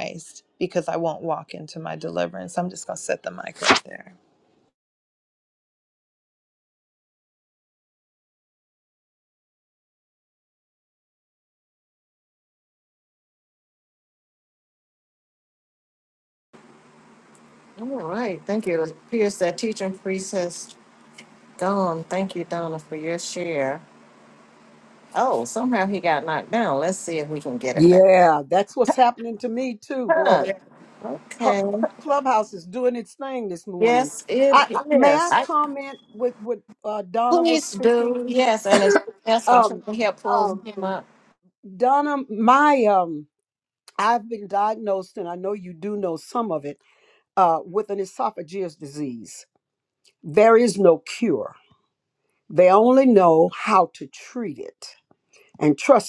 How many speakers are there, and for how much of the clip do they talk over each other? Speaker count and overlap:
3, about 7%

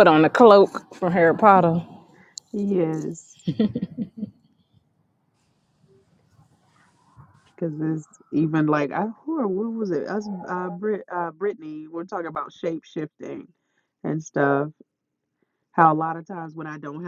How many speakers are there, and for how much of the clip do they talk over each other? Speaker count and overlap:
2, no overlap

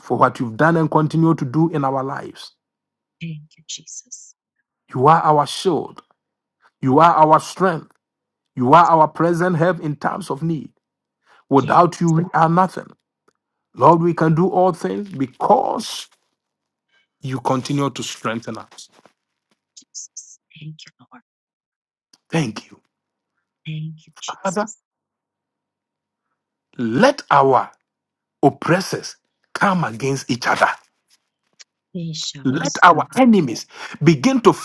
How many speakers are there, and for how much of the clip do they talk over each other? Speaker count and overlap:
2, about 1%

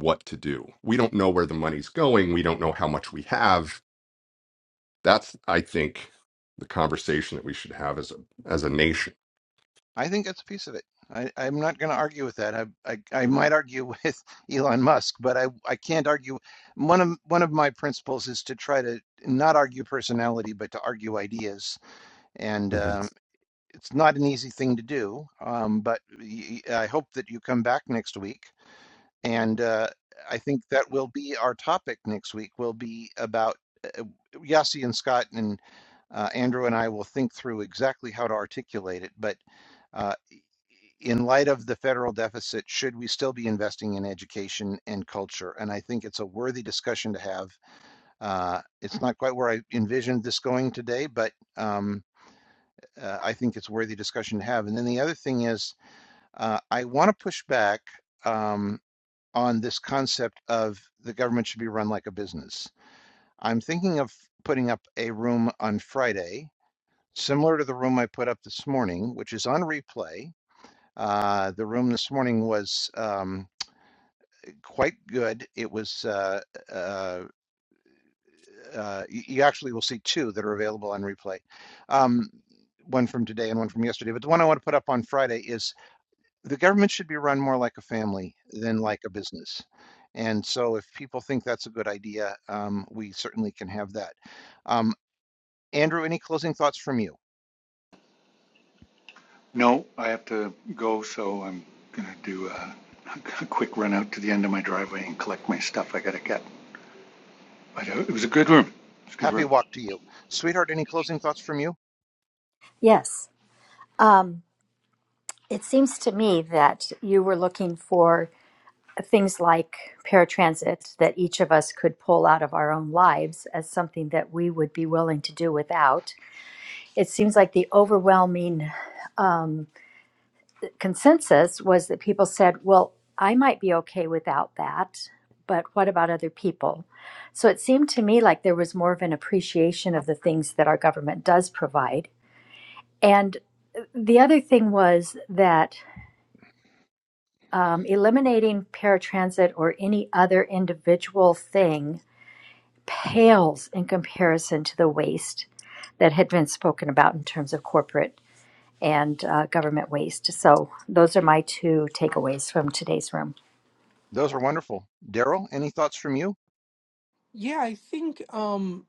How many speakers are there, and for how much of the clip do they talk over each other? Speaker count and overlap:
5, under 1%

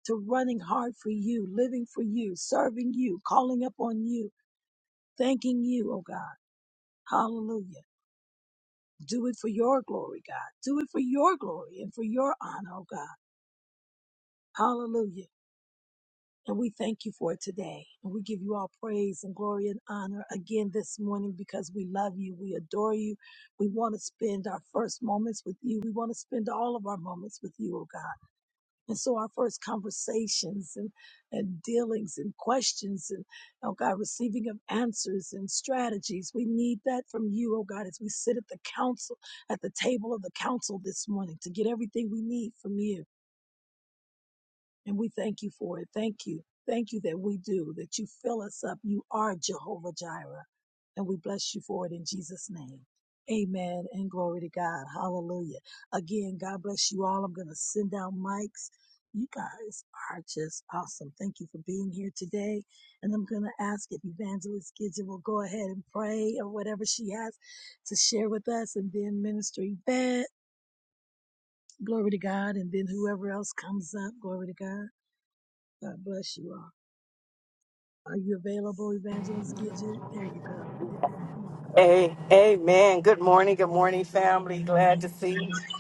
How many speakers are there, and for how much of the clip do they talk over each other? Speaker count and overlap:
2, no overlap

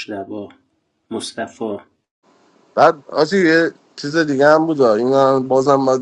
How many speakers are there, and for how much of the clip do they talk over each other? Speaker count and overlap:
2, no overlap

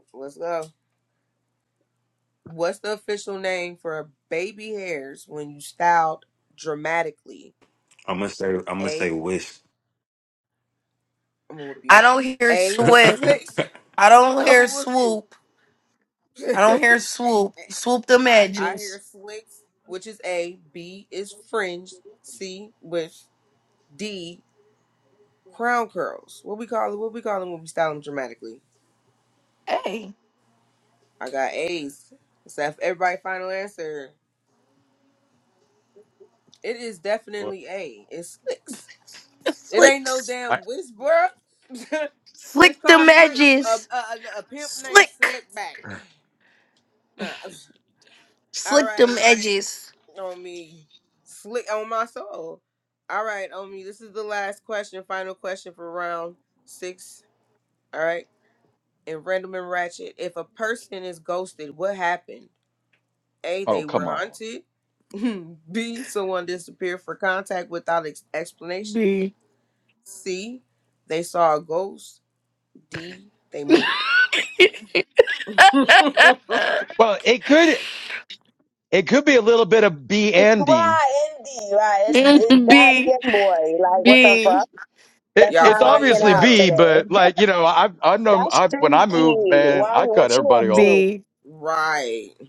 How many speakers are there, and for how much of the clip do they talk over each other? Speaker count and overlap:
5, about 13%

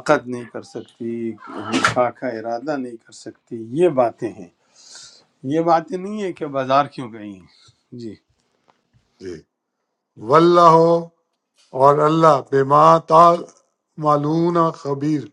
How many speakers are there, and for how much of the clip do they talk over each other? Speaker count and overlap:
2, about 1%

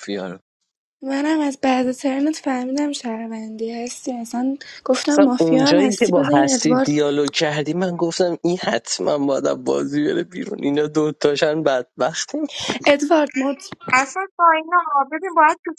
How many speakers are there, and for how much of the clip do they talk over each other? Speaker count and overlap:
3, about 12%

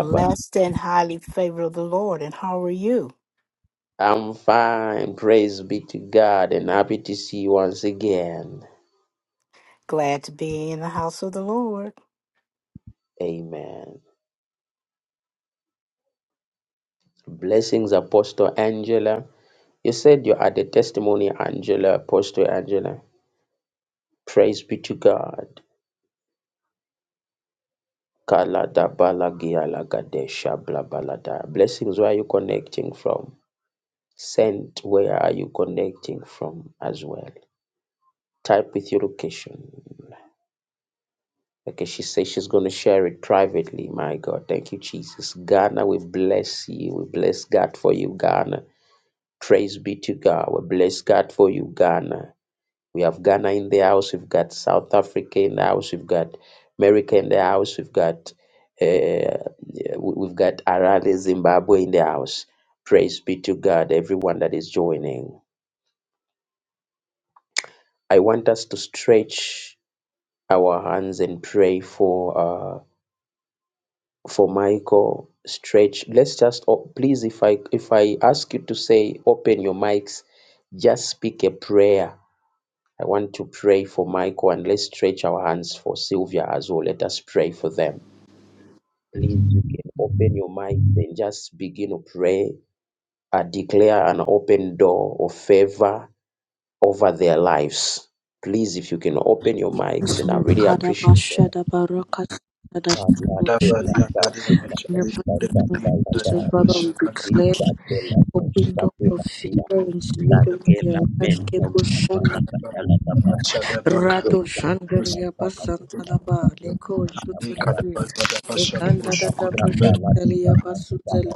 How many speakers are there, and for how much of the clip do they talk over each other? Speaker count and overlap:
4, about 10%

